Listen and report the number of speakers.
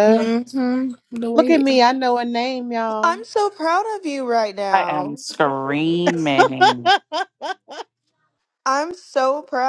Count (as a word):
four